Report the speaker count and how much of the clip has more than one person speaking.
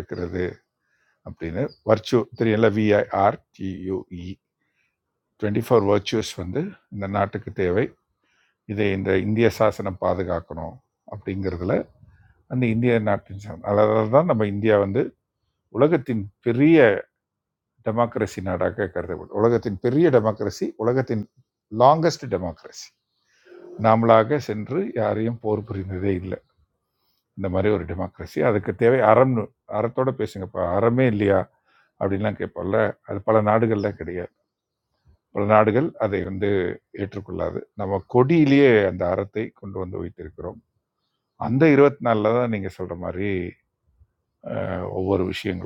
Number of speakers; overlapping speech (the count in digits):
1, no overlap